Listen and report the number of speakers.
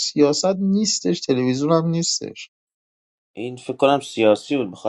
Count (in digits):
2